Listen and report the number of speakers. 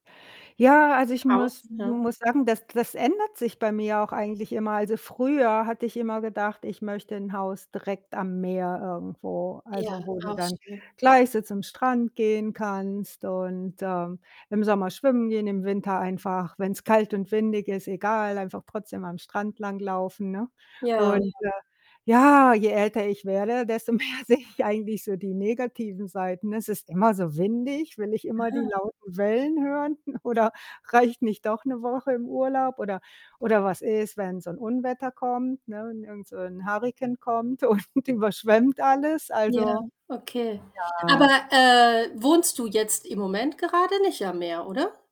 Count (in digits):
2